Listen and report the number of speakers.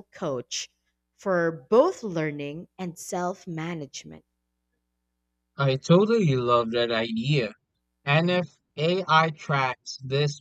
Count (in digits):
2